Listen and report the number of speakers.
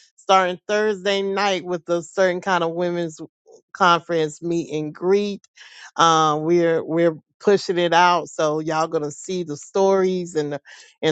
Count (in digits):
1